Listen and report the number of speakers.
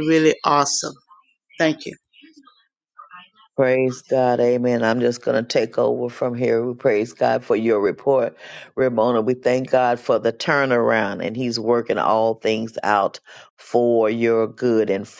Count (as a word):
two